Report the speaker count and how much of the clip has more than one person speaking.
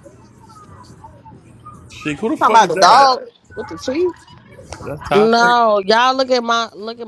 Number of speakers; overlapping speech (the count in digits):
3, about 16%